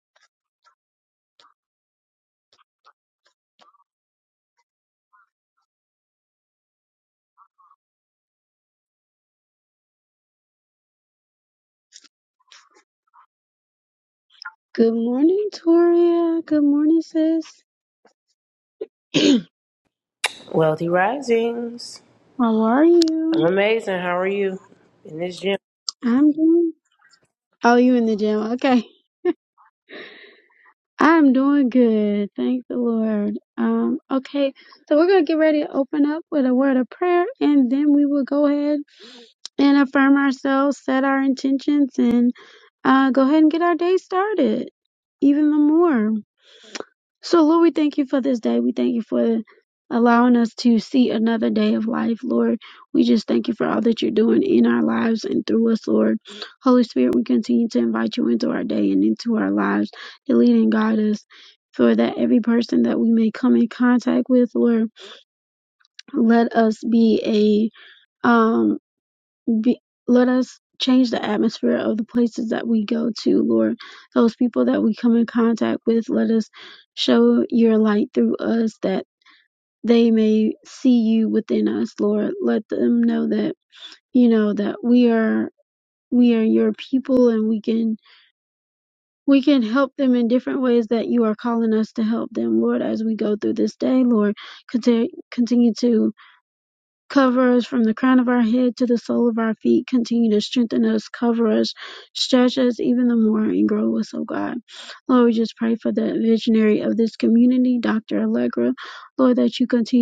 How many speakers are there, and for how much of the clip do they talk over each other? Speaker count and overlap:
two, under 1%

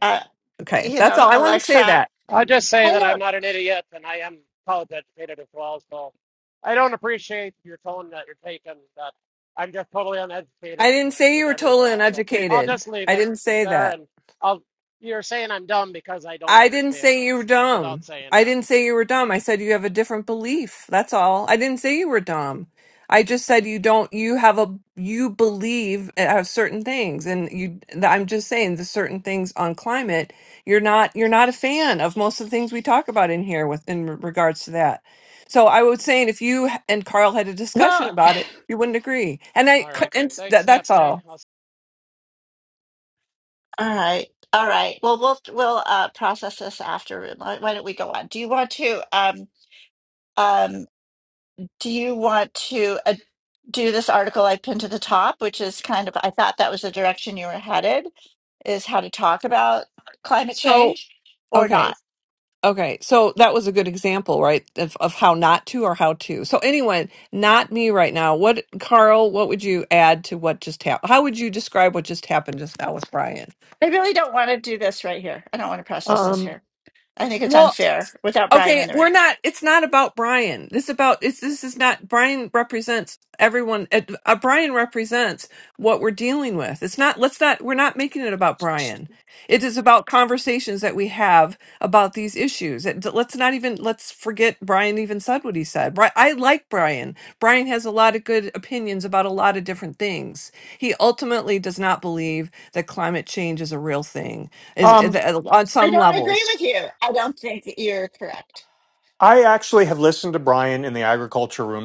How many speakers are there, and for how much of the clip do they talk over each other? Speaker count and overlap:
four, about 8%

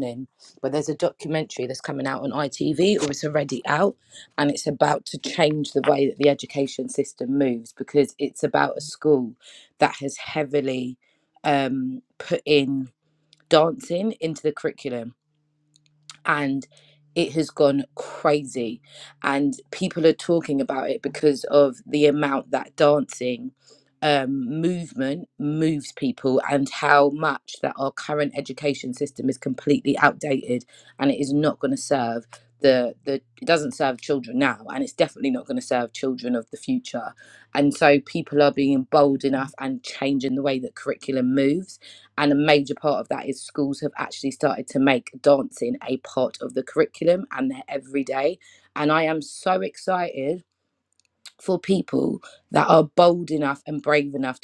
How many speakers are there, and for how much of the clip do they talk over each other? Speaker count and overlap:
one, no overlap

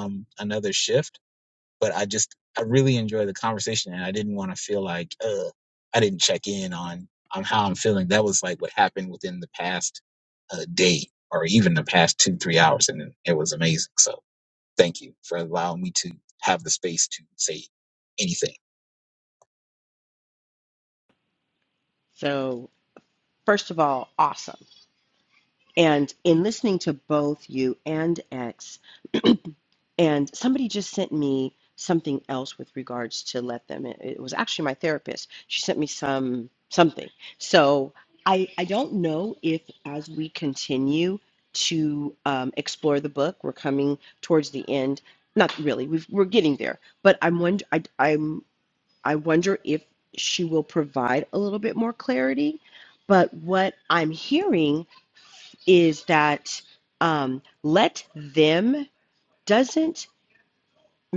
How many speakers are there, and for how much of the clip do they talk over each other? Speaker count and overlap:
two, no overlap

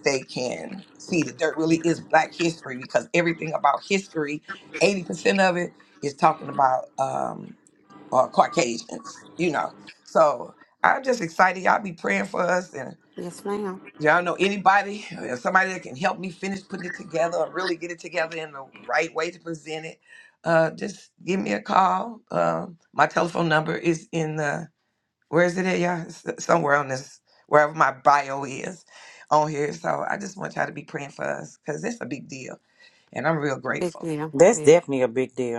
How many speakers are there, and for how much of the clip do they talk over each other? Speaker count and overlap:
three, about 2%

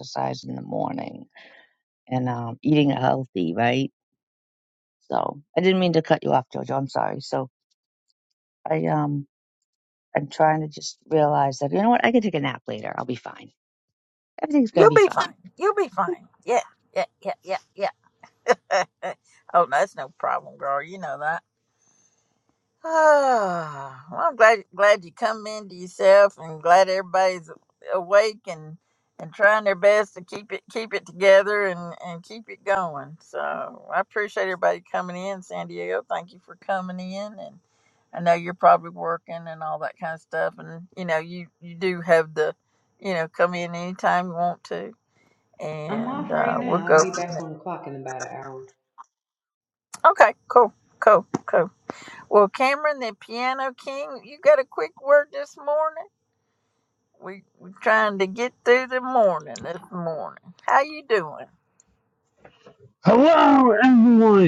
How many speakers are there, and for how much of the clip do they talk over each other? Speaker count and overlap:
four, about 3%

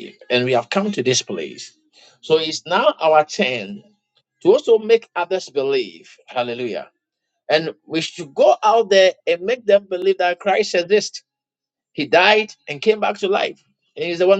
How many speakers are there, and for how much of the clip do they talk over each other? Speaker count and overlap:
one, no overlap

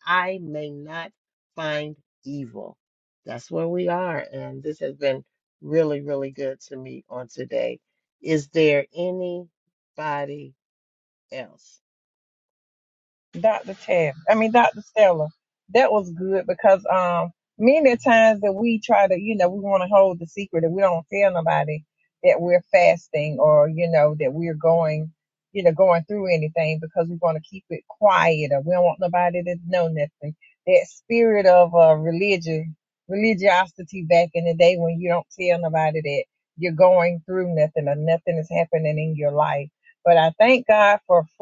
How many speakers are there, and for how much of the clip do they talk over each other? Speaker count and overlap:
two, no overlap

